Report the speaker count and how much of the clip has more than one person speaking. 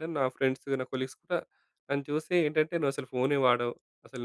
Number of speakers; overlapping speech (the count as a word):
one, no overlap